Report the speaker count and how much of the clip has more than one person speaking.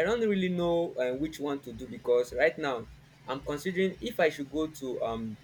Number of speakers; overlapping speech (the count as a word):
one, no overlap